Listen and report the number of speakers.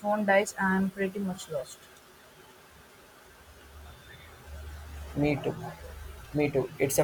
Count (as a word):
two